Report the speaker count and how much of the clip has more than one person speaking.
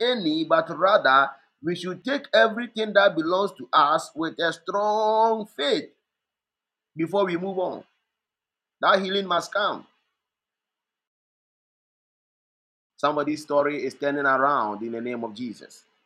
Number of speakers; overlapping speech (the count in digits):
1, no overlap